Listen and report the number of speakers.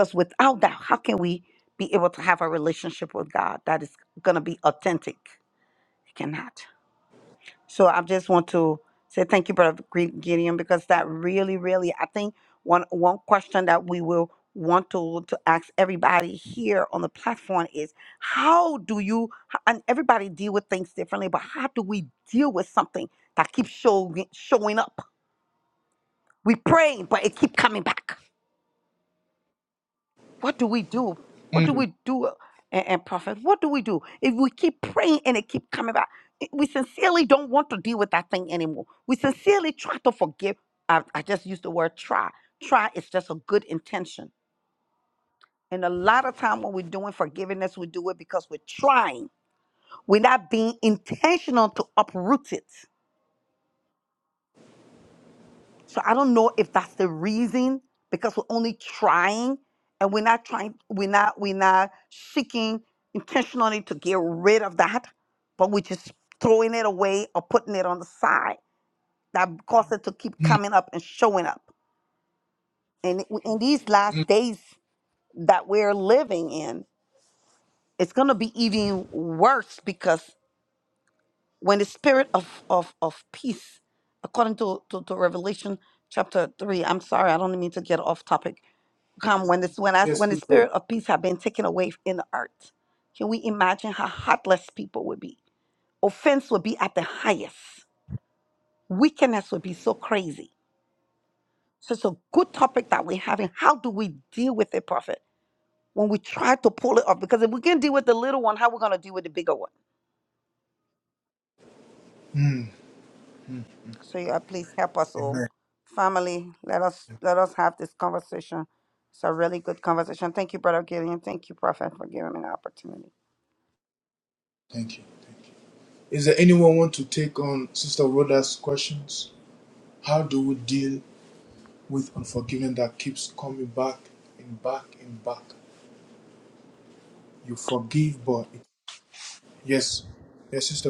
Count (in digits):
2